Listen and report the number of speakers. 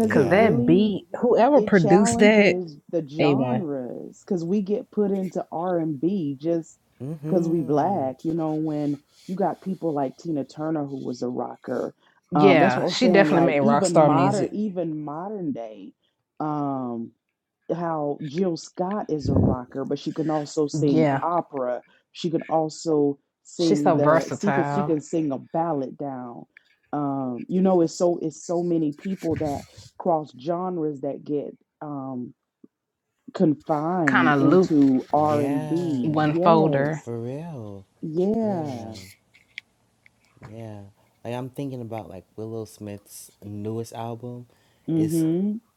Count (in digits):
3